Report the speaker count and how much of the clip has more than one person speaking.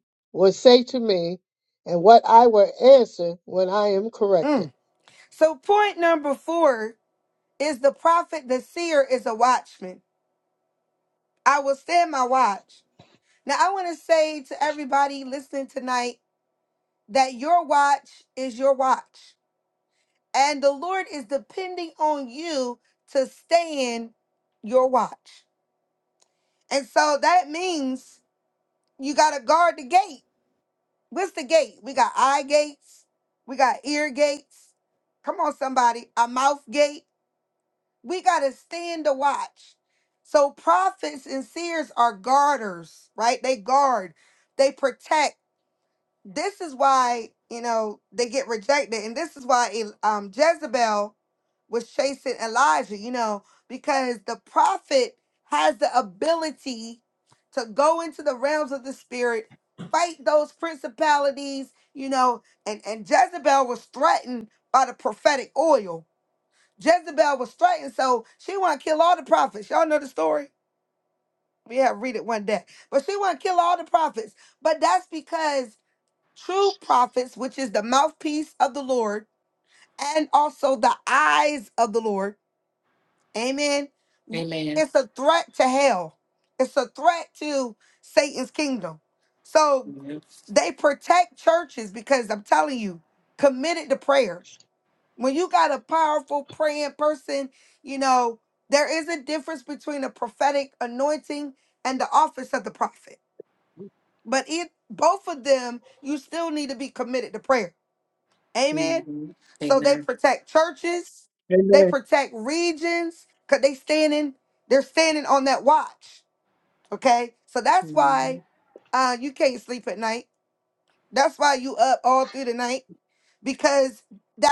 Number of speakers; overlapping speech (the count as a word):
three, about 1%